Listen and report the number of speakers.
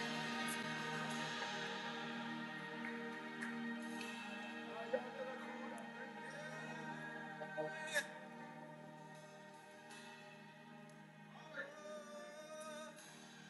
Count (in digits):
0